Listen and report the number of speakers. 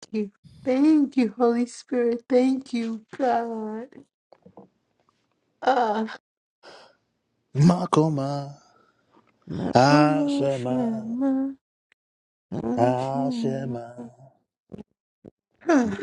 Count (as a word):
three